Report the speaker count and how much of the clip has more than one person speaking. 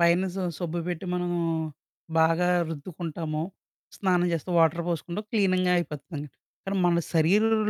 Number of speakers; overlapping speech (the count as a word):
one, no overlap